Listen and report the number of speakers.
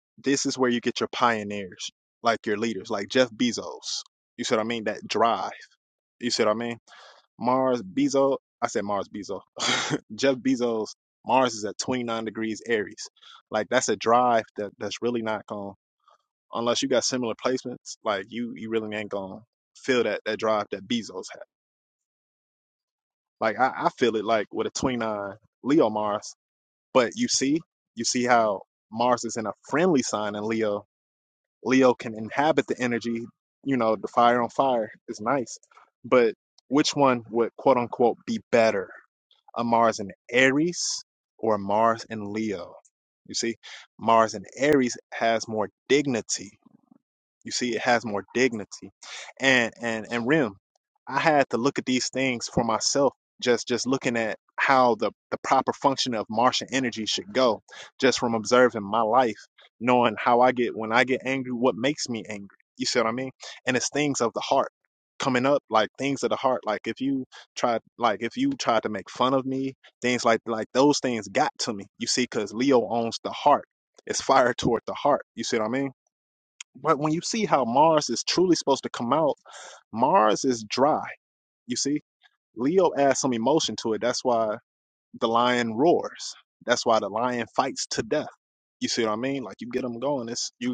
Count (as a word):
one